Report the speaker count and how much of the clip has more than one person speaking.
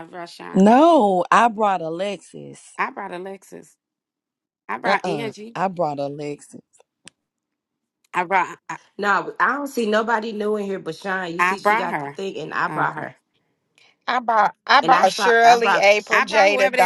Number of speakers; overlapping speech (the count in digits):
4, about 22%